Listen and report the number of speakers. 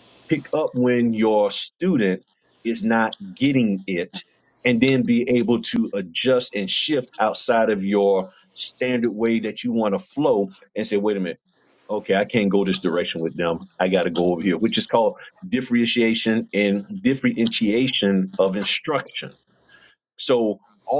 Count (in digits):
1